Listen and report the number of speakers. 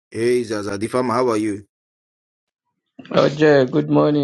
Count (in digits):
2